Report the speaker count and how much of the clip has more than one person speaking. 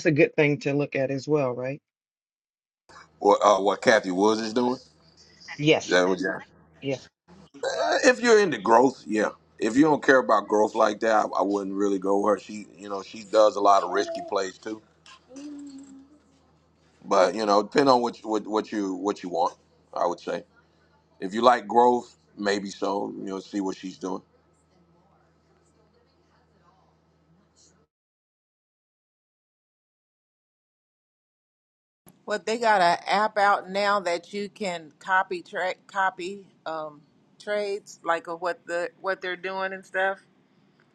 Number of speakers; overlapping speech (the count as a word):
three, under 1%